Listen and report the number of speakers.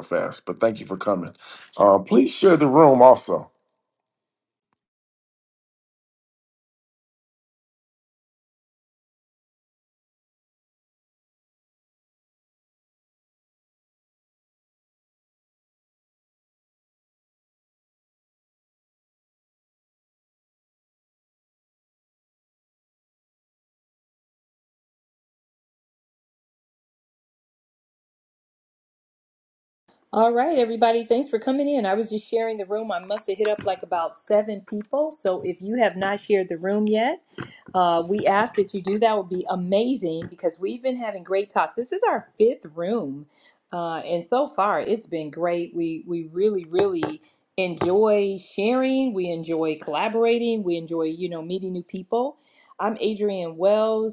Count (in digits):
2